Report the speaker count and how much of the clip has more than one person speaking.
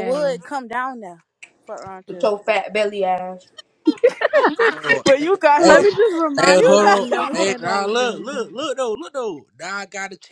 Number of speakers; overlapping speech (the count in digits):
4, about 27%